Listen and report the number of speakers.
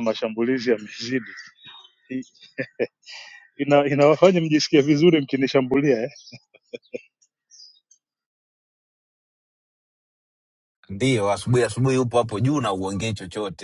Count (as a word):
two